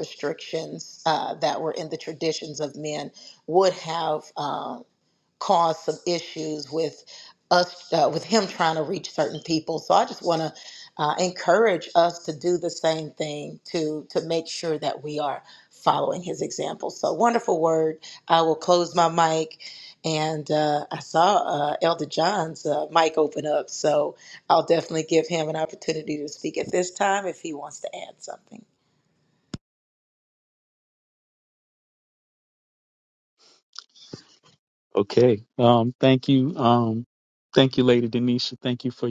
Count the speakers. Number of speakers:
two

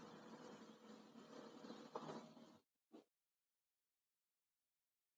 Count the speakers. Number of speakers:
zero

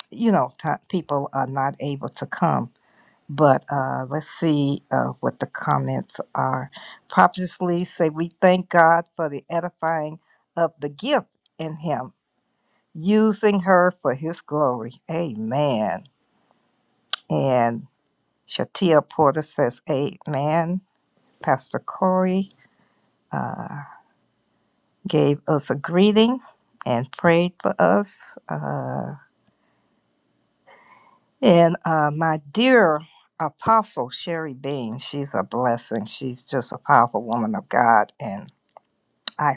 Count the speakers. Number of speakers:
one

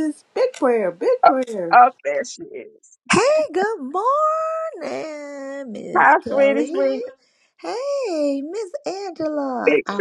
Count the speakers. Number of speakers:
three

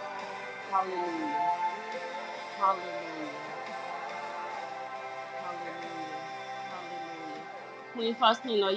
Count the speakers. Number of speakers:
one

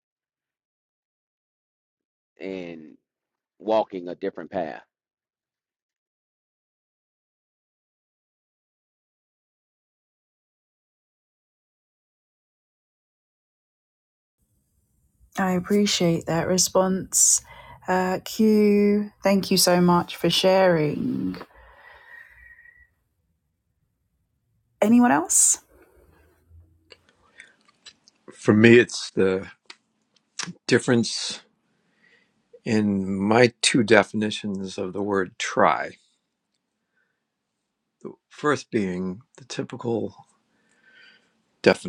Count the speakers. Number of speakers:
three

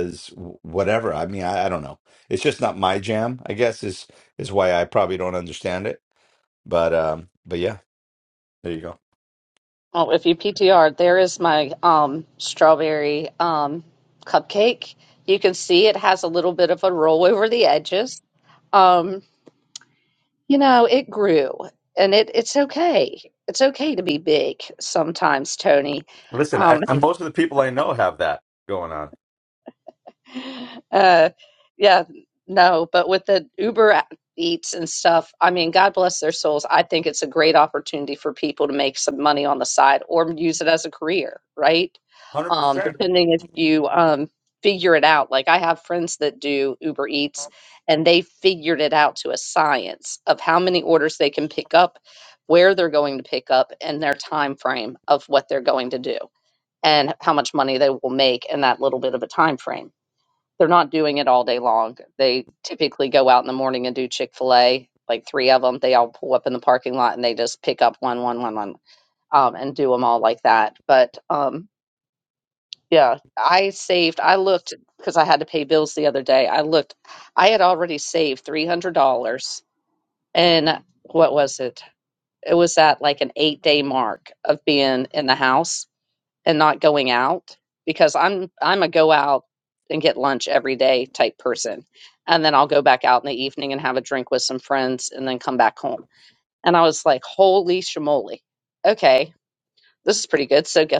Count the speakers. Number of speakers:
two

